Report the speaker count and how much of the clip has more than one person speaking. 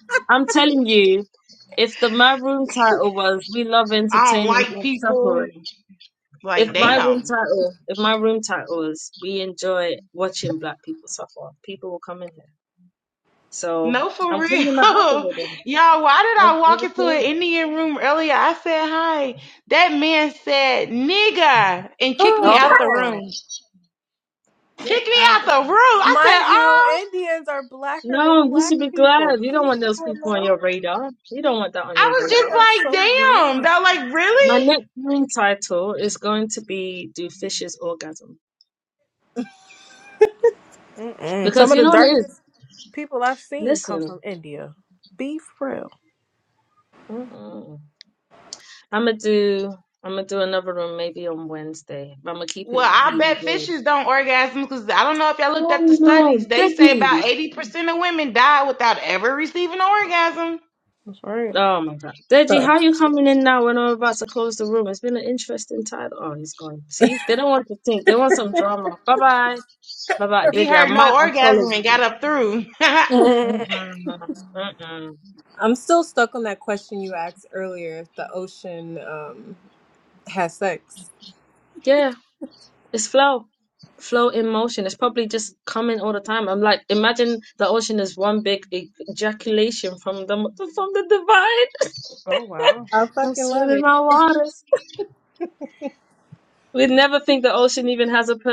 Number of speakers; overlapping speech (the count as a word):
four, about 16%